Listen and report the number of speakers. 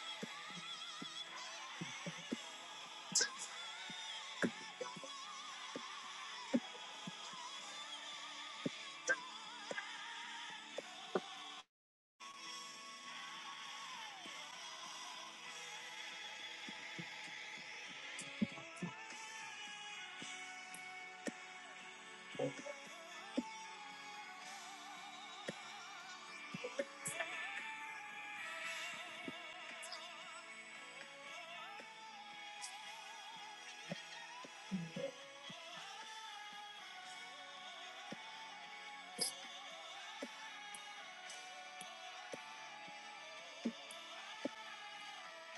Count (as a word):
zero